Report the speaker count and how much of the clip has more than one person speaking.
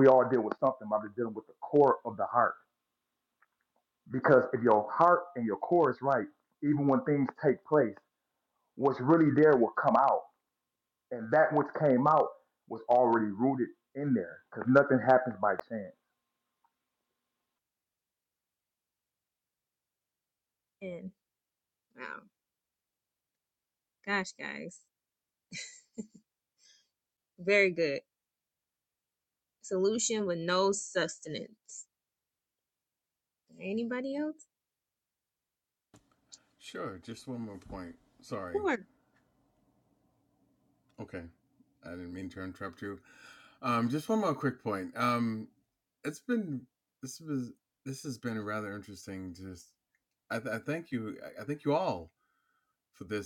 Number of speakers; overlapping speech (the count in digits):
3, no overlap